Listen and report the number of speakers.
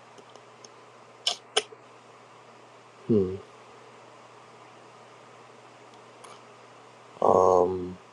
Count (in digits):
1